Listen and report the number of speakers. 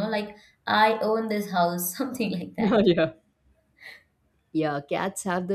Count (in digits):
2